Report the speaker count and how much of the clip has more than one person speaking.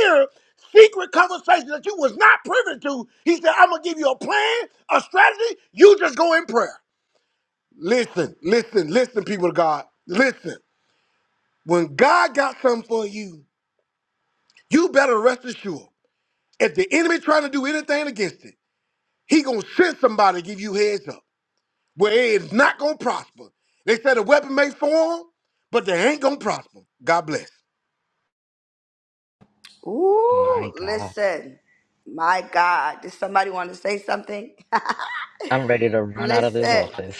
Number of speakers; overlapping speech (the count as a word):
three, about 4%